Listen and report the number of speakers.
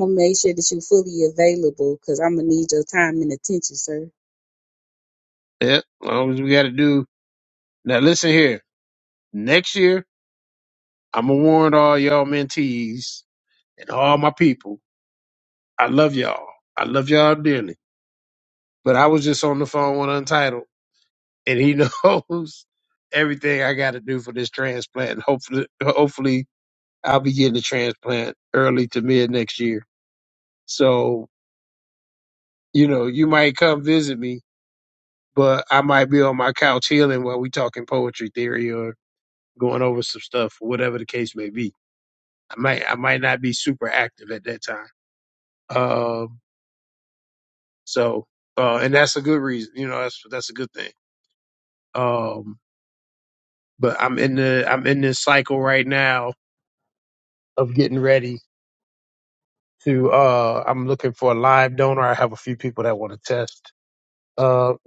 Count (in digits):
2